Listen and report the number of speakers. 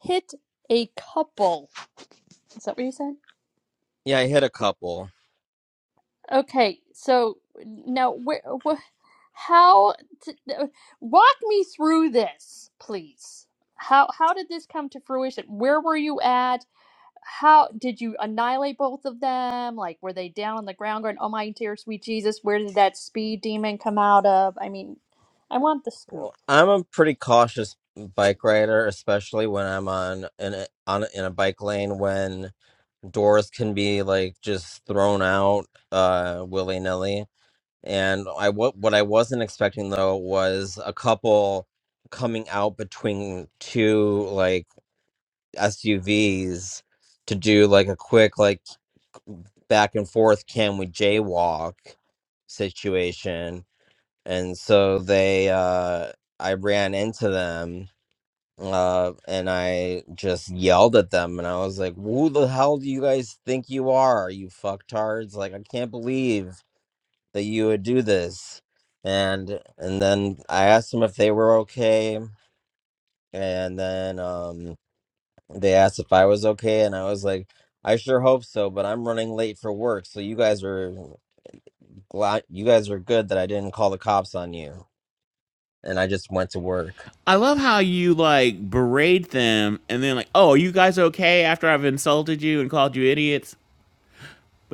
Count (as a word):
three